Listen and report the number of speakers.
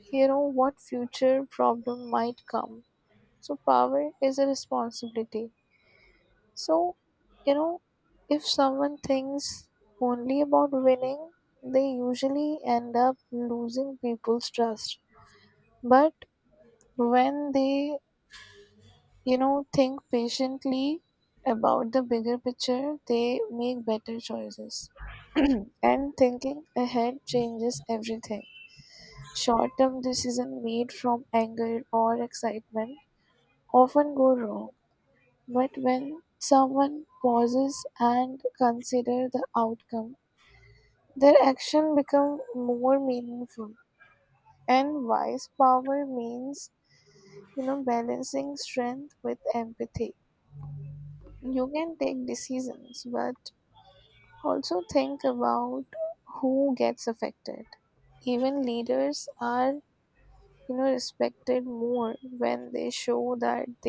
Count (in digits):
1